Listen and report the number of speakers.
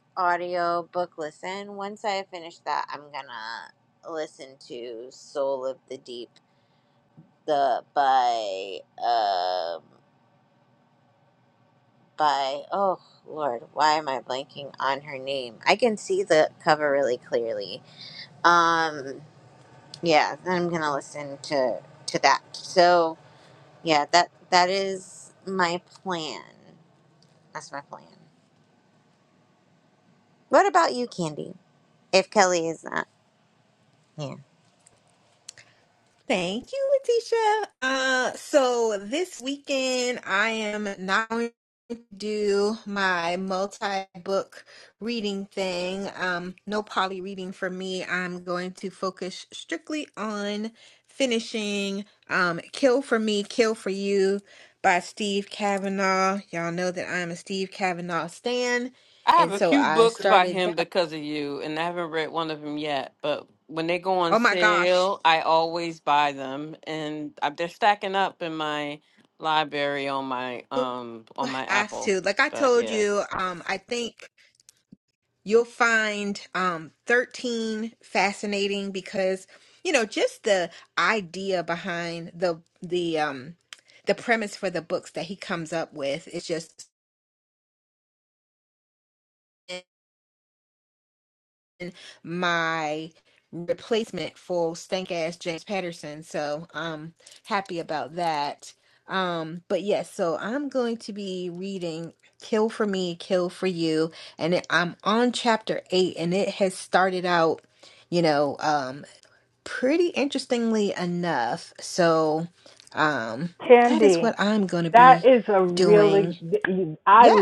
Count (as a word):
four